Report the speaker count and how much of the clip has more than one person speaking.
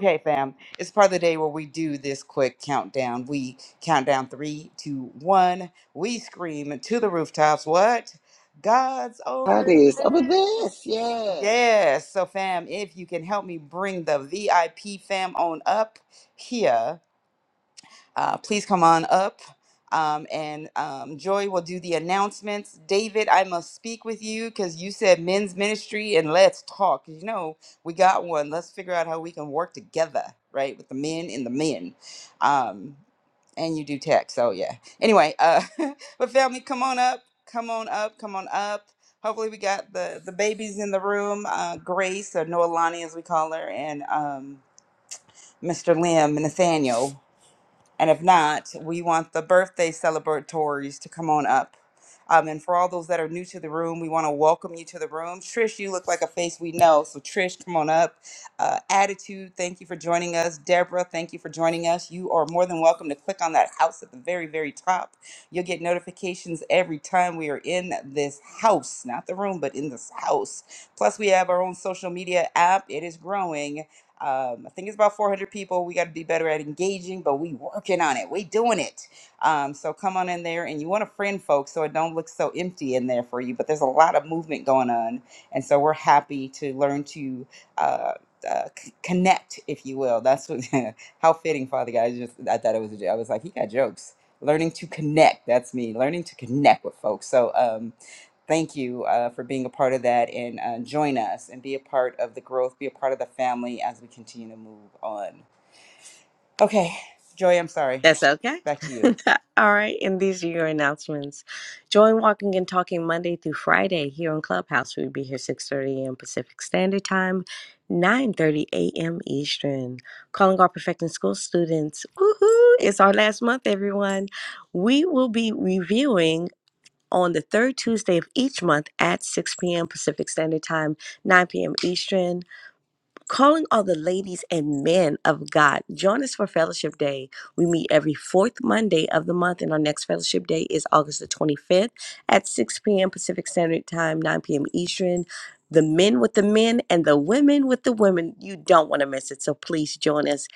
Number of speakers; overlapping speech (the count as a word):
three, about 1%